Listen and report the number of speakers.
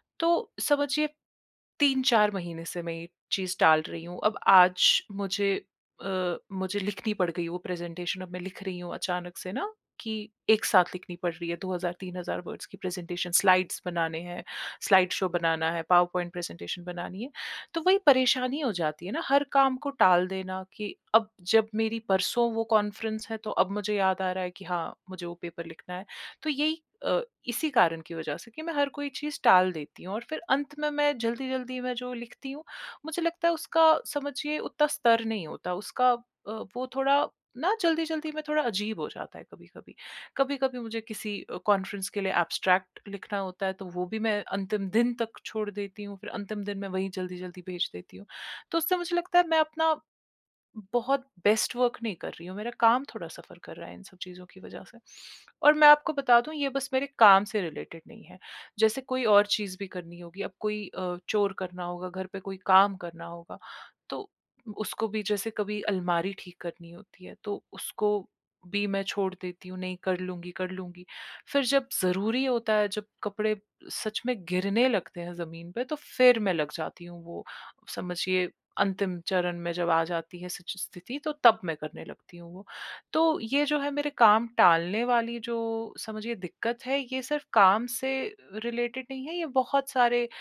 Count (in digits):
1